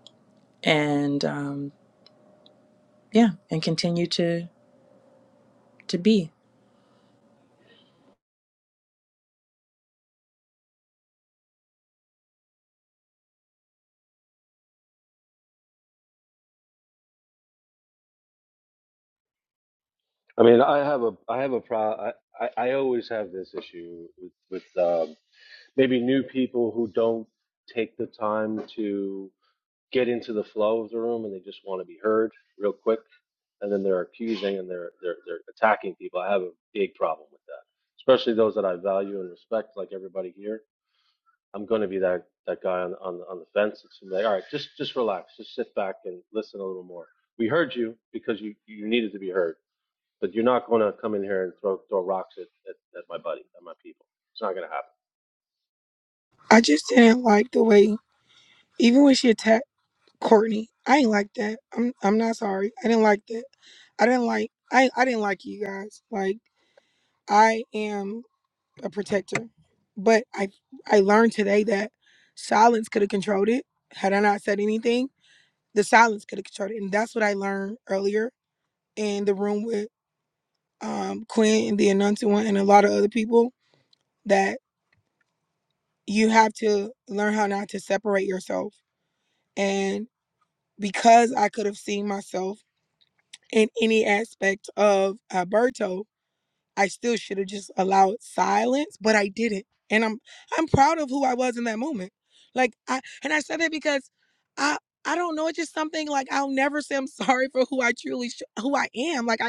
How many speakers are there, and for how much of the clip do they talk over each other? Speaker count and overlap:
3, no overlap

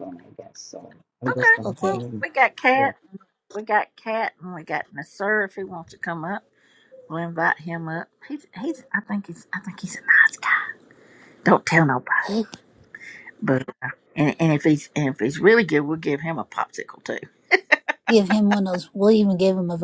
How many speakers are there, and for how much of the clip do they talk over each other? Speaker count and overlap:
3, about 5%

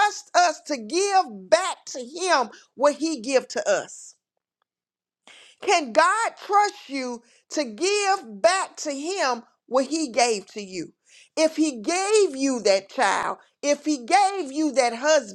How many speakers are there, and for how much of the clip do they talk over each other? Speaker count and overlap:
1, no overlap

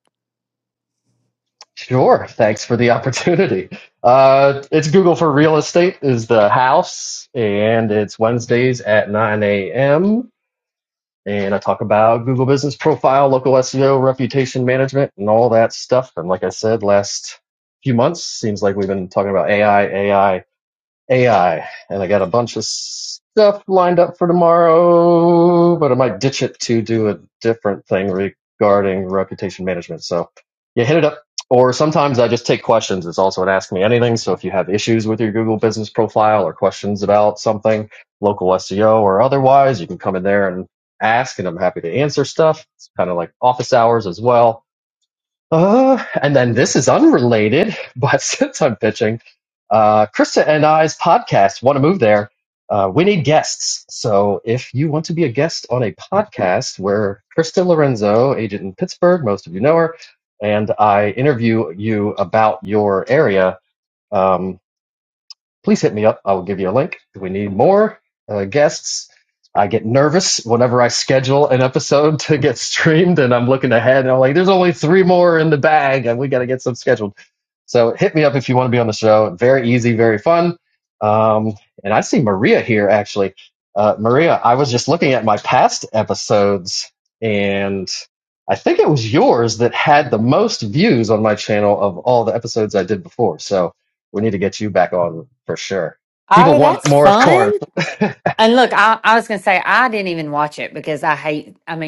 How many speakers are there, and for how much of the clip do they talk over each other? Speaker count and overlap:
2, about 1%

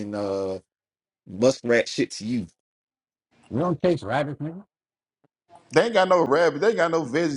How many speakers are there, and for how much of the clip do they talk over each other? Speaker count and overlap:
3, no overlap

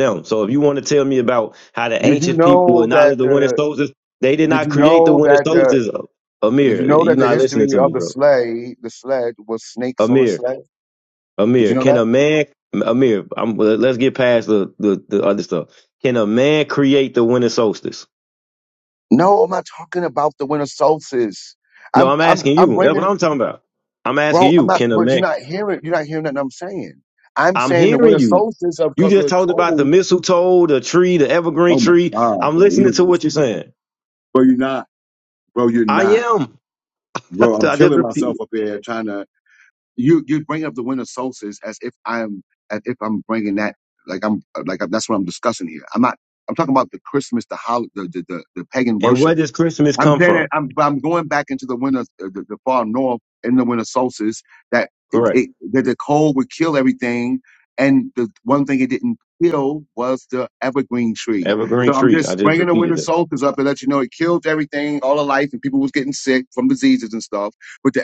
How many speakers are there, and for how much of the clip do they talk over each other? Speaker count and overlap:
2, about 21%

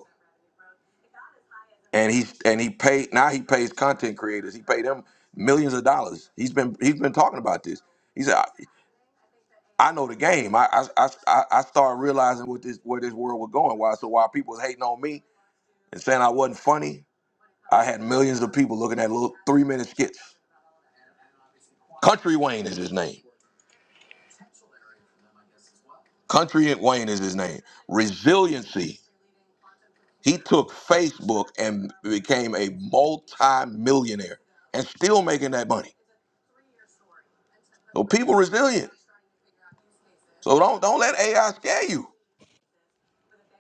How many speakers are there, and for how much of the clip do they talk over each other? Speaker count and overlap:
1, no overlap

